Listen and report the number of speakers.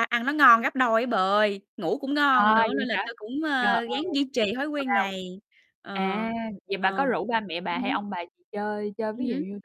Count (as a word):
two